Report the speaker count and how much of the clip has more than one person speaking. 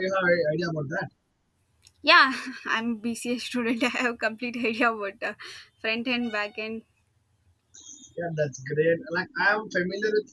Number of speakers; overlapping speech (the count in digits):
2, no overlap